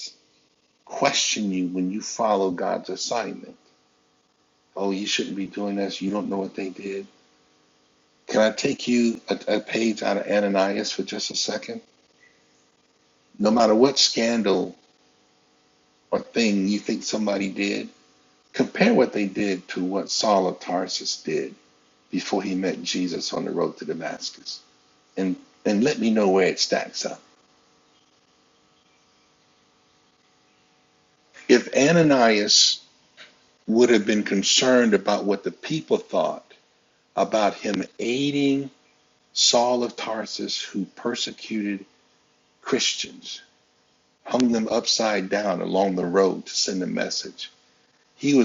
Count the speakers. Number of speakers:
one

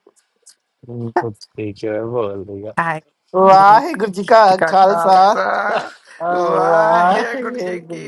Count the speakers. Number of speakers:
three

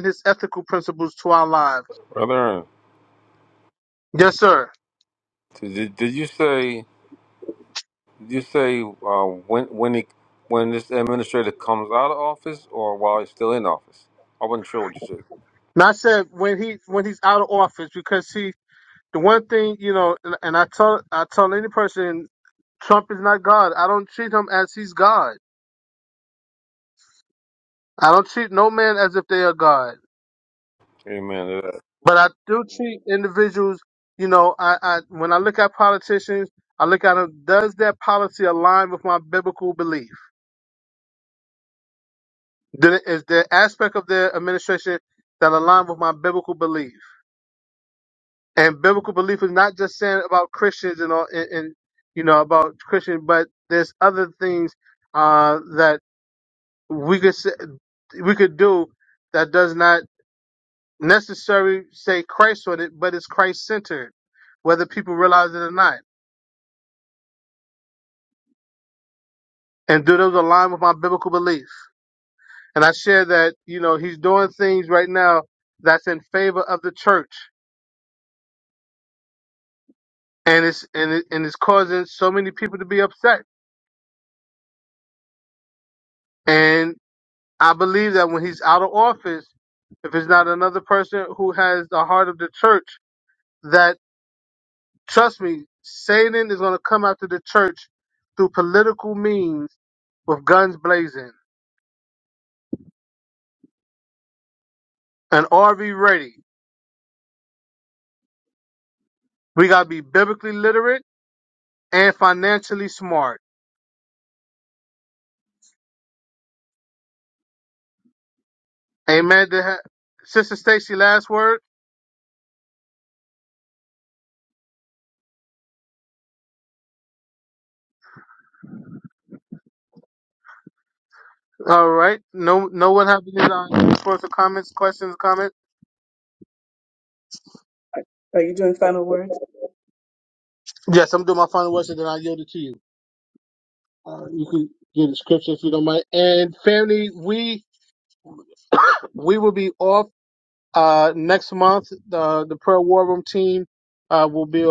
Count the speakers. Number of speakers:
three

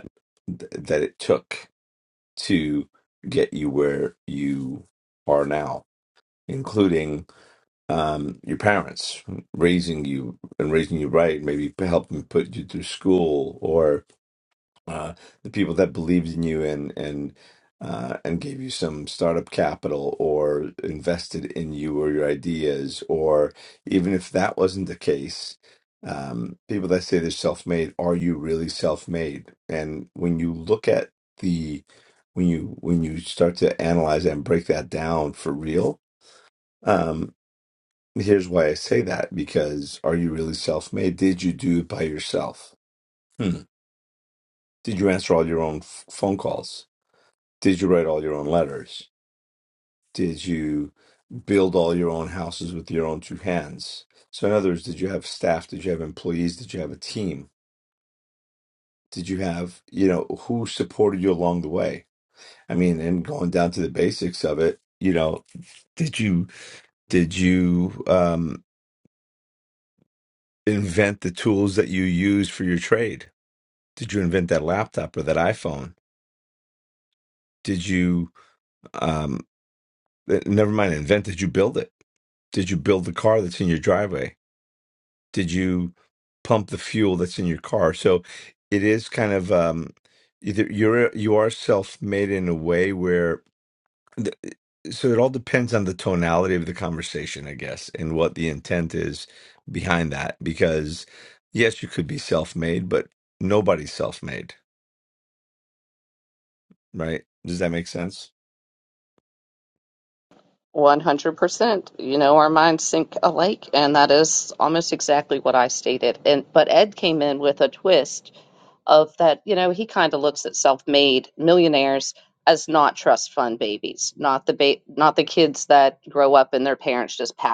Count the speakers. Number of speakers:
two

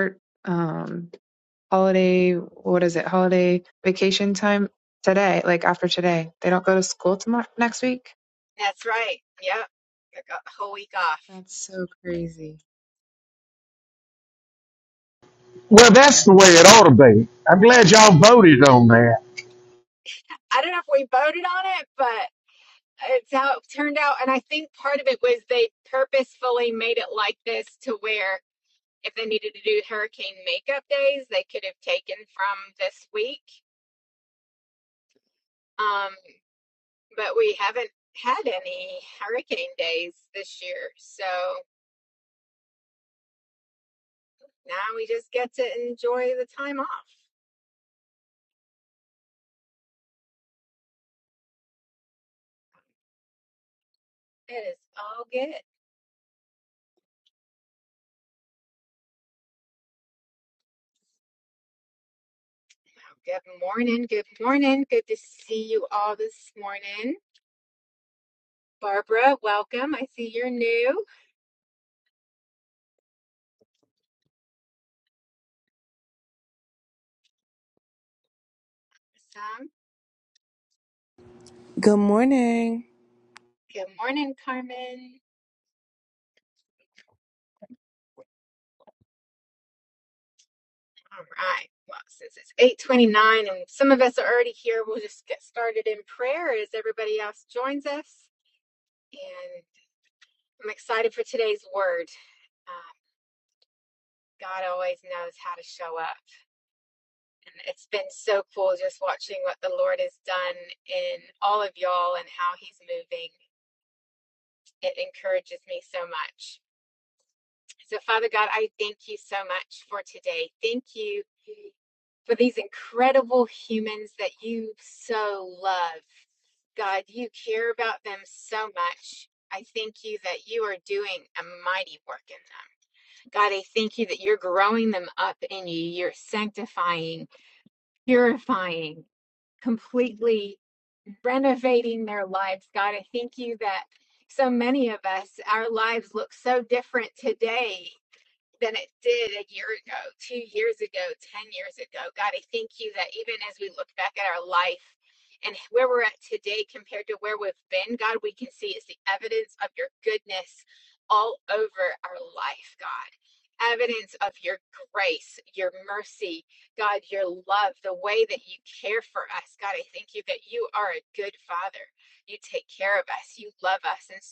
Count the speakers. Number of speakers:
four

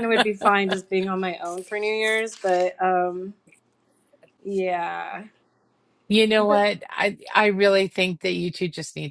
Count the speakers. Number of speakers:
two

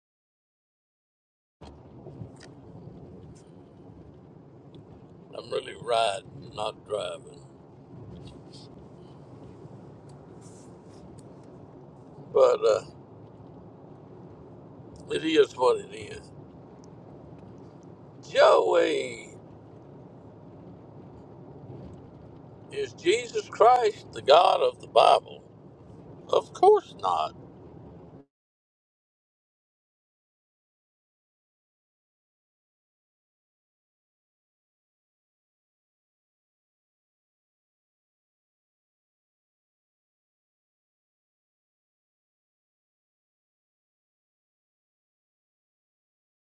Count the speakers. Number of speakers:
one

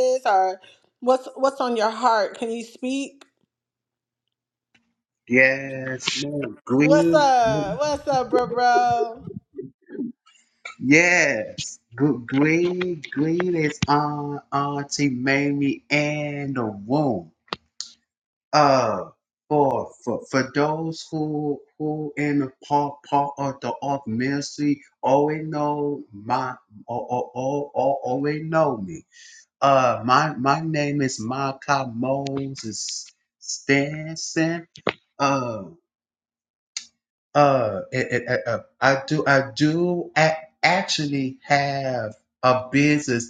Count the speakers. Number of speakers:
two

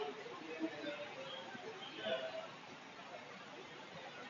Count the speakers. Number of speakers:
zero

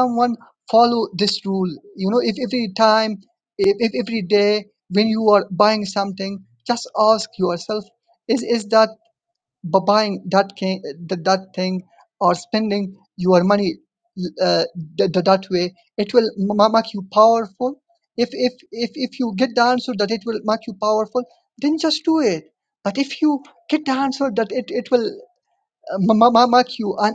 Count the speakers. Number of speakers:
one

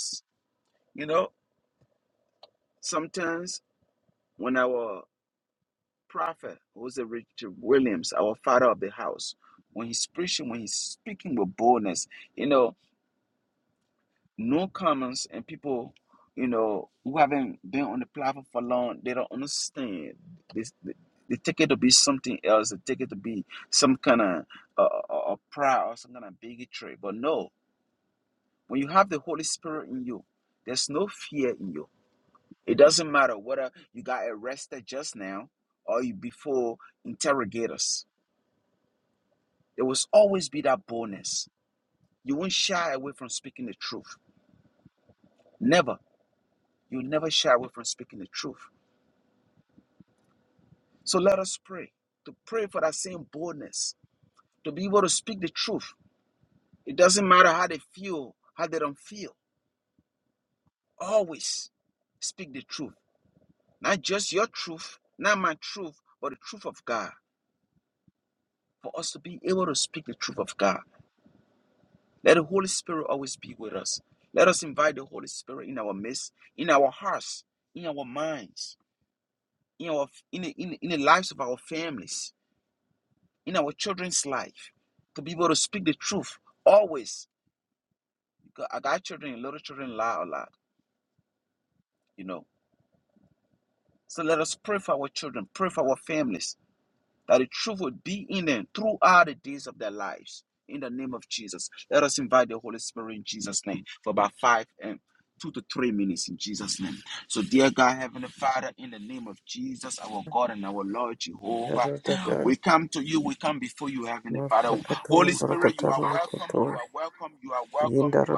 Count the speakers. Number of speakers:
two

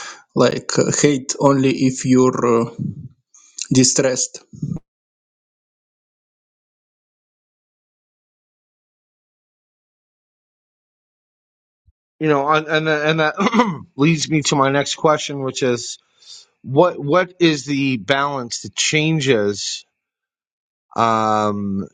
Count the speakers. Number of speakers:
two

